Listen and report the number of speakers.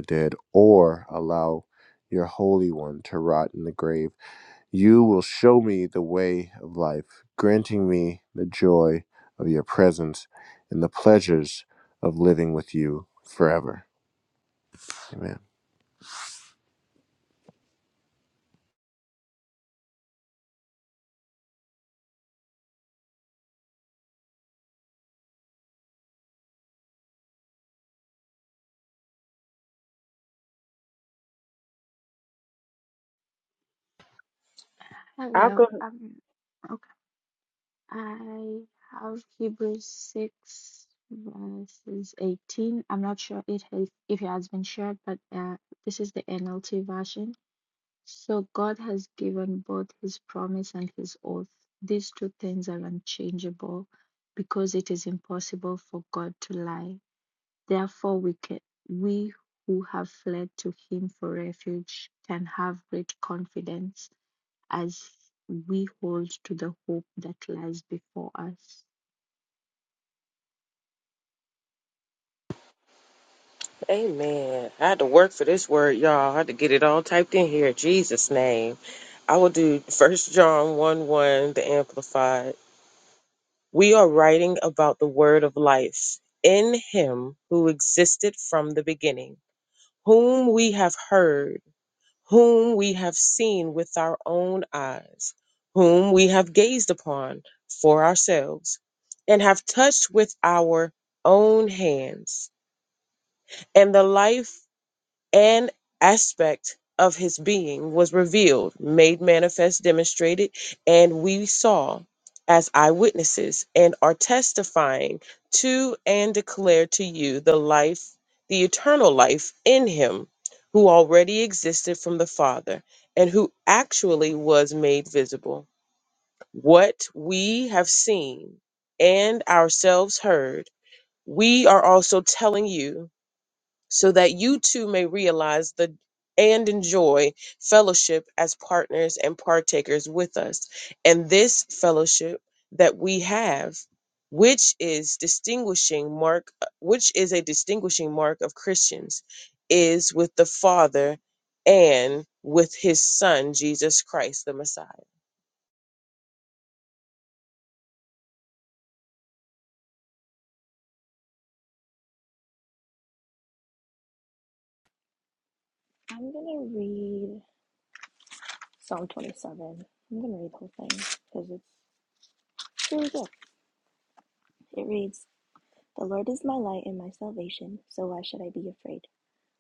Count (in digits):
4